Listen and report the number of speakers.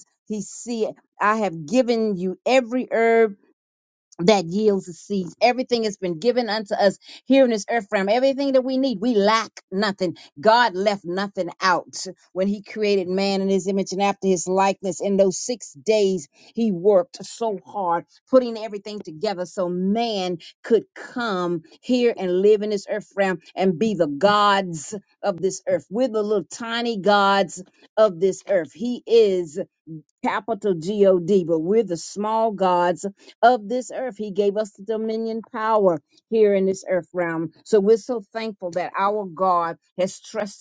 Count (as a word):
one